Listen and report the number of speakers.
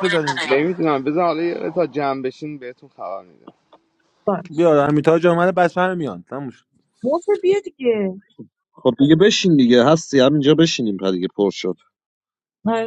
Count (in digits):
4